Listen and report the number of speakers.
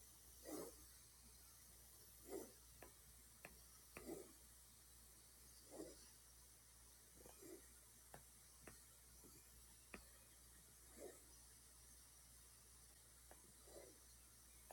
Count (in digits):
0